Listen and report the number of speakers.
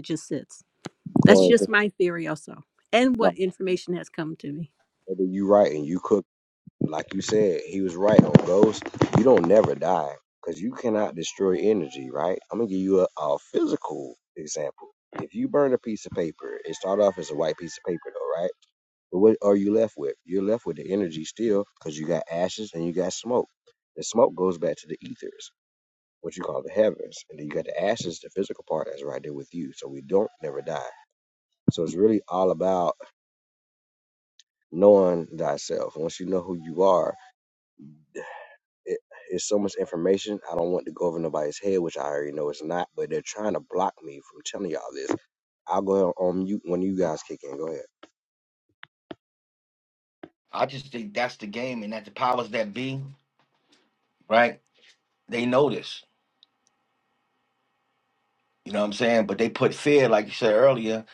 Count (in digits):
3